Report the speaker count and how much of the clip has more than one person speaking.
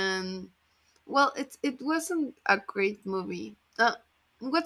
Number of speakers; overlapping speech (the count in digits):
1, no overlap